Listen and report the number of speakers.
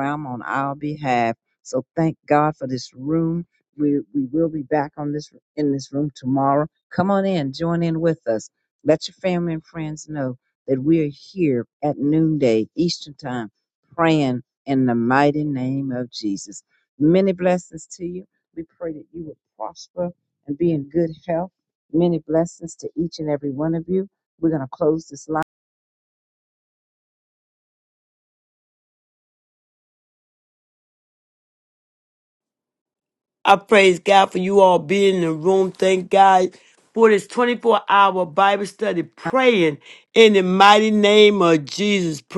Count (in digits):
2